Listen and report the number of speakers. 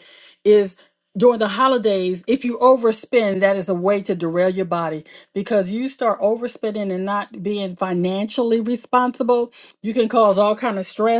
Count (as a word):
one